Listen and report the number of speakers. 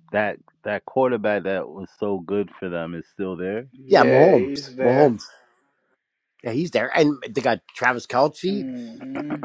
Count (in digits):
3